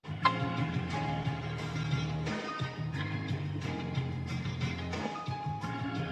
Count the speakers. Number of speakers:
0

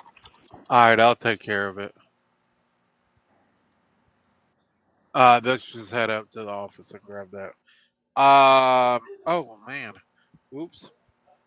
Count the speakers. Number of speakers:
1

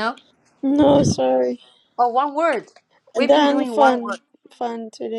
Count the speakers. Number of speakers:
2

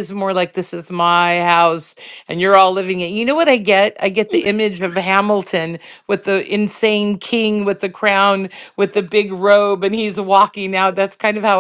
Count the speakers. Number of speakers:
1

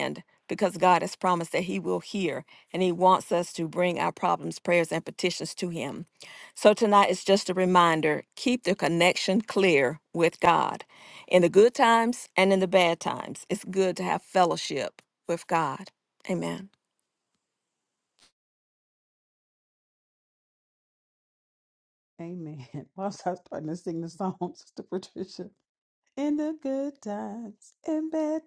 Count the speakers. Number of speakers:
2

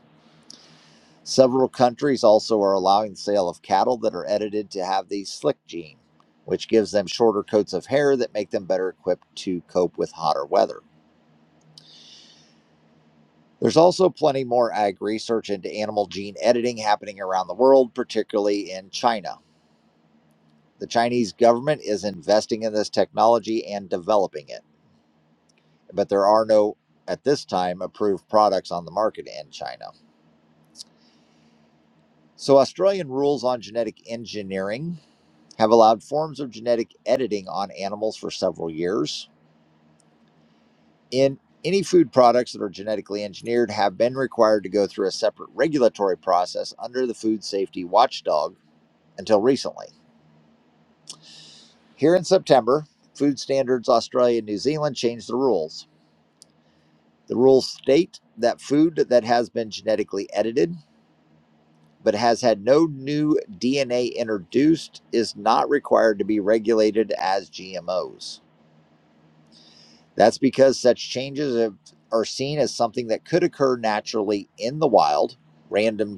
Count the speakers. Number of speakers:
1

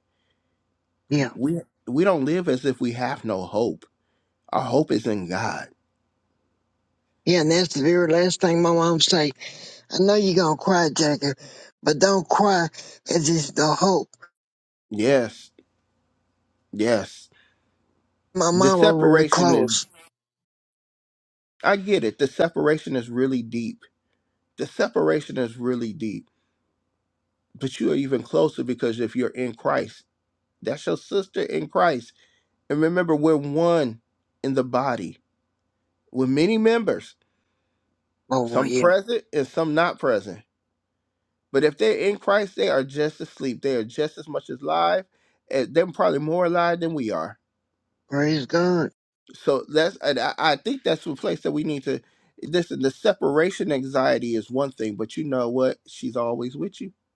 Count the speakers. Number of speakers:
2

